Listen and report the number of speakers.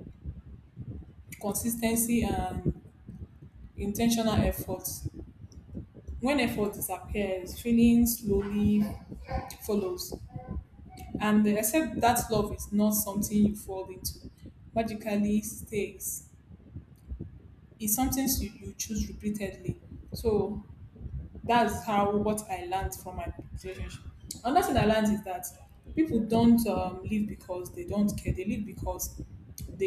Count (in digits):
1